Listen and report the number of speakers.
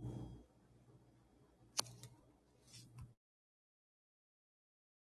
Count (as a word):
zero